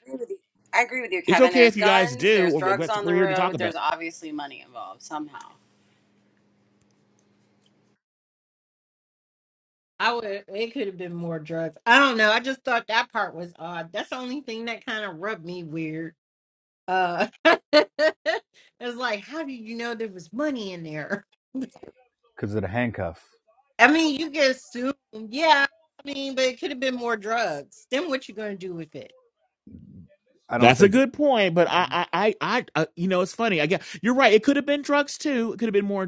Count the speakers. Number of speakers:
four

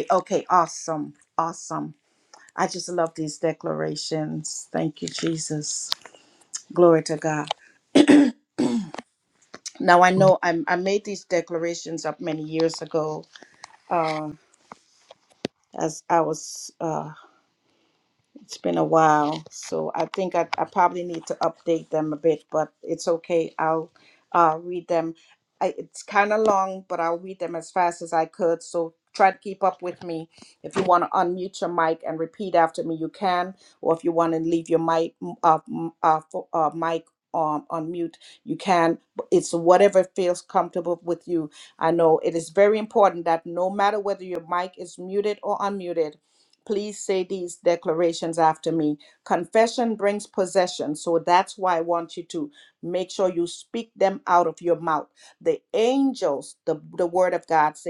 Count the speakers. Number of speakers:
one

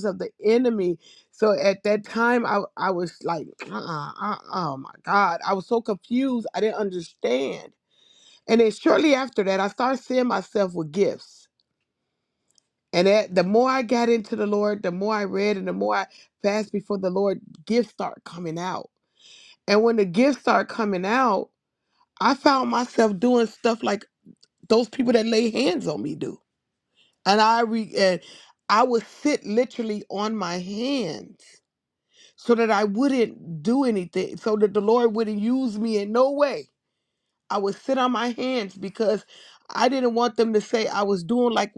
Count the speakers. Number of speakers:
one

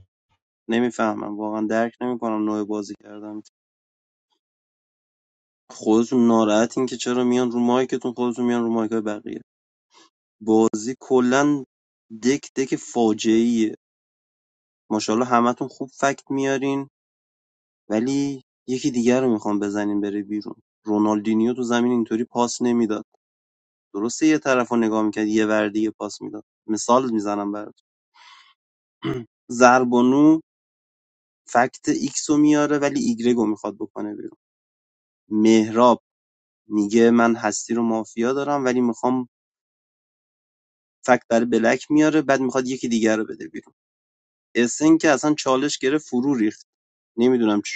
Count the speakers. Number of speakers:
one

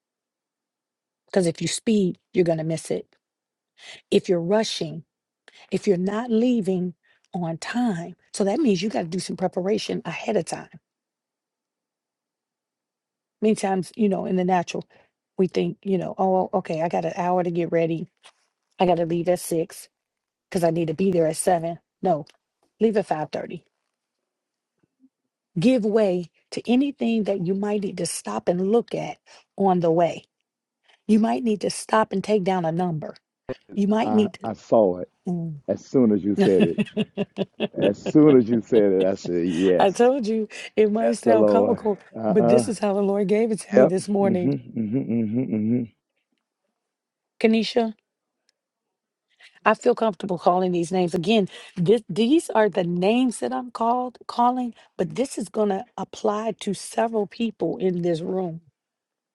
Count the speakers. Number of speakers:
two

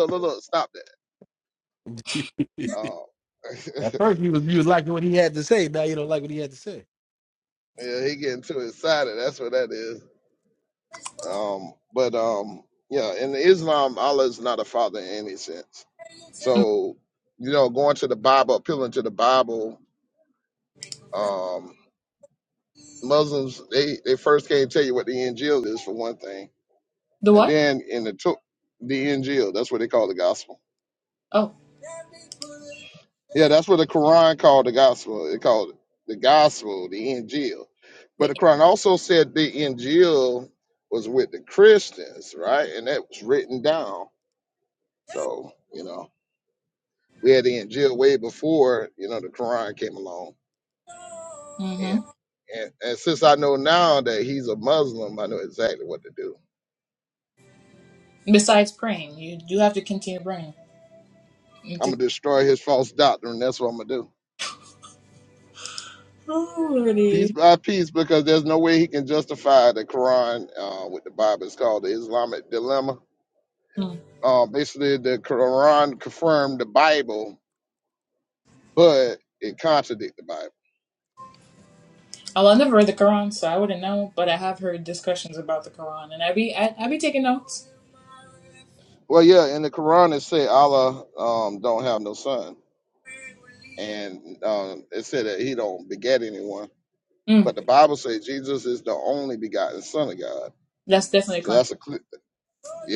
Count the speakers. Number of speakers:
three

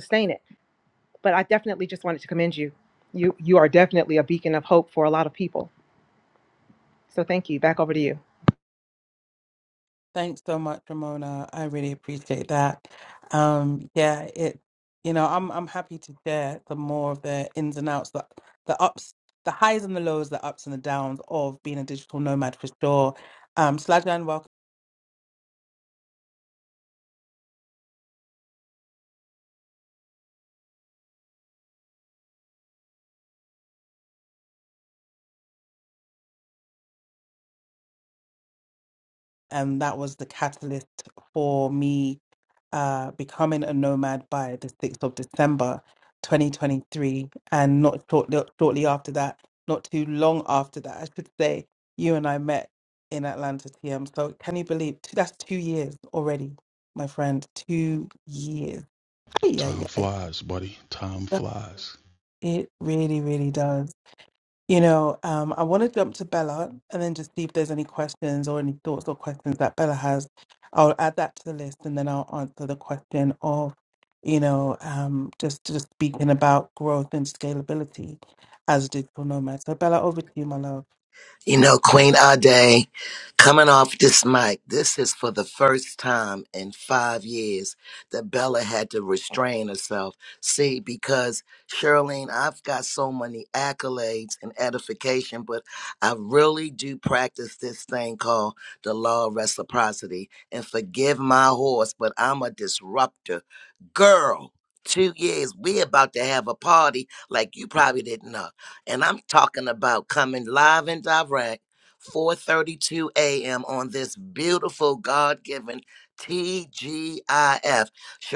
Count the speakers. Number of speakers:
four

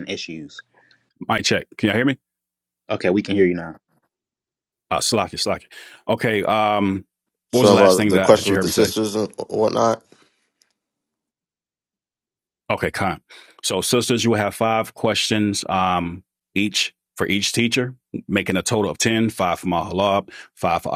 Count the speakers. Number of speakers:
three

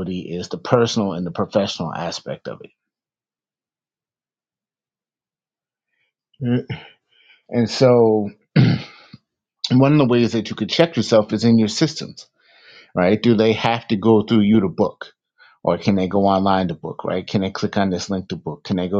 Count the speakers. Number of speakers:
one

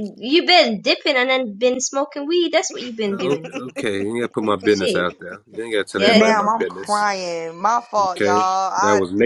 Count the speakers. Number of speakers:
three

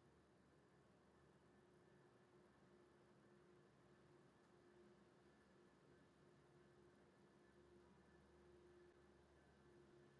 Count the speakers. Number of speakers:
zero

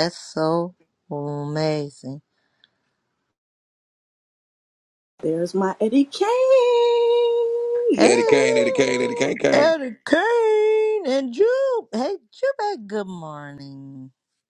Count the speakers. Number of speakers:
three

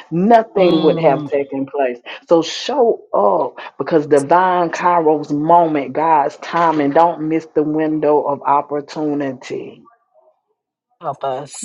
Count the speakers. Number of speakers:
two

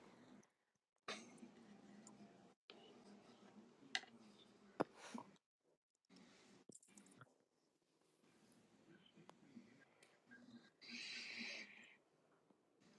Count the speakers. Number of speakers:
zero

